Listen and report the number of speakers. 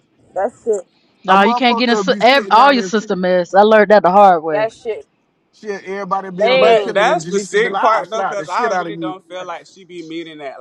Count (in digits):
4